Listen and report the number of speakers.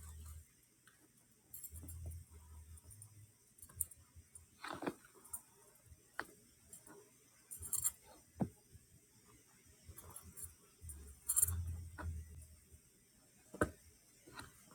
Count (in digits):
0